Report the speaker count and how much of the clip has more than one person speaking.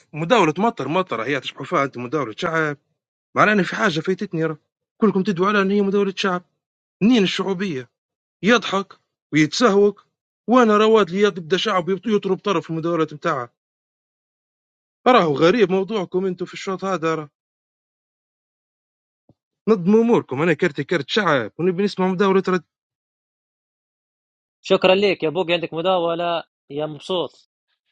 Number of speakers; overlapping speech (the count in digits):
2, no overlap